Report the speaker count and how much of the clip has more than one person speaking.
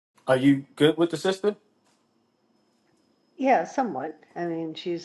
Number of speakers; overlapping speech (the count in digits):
2, no overlap